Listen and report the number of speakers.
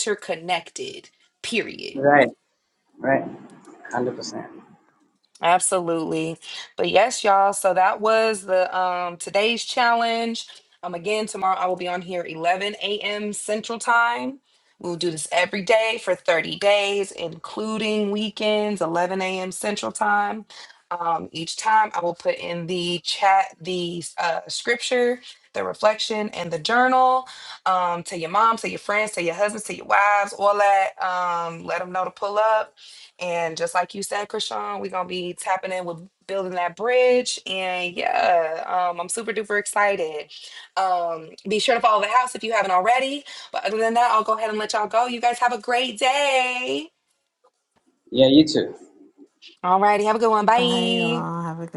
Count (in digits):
3